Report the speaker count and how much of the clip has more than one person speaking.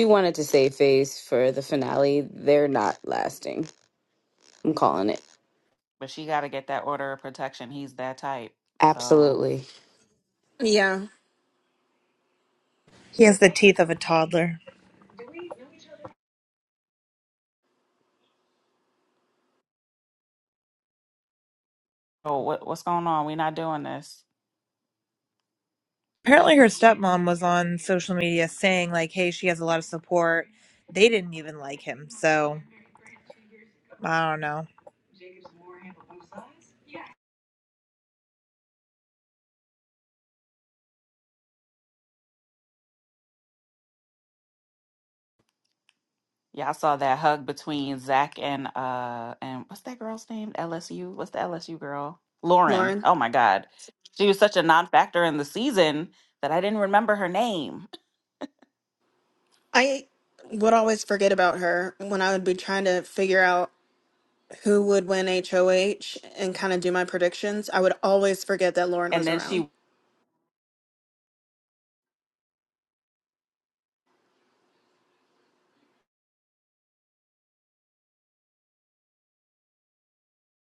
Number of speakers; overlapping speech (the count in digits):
4, about 2%